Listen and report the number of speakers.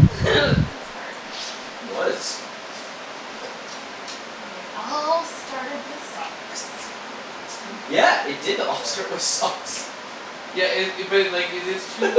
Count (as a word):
three